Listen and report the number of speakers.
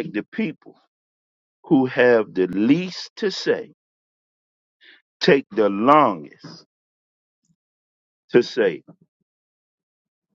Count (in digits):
1